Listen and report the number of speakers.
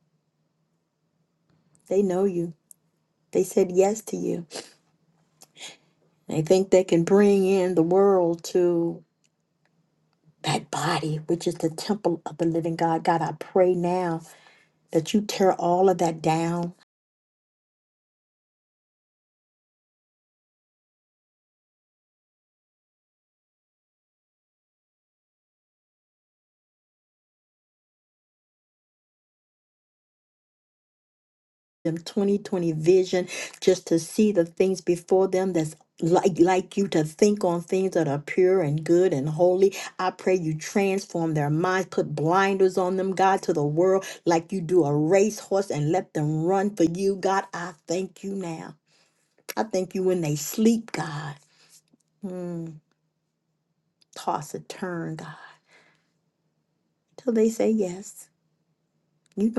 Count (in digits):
1